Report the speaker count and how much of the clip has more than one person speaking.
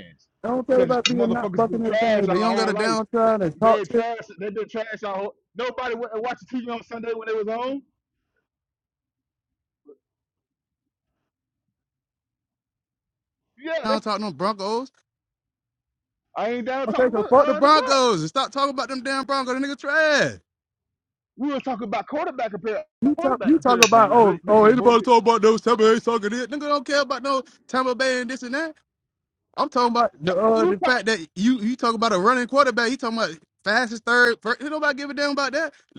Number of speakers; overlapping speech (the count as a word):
two, about 18%